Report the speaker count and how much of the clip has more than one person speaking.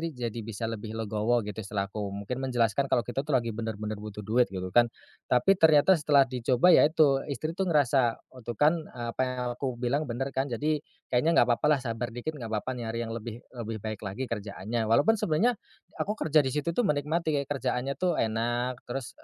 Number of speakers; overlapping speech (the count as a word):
one, no overlap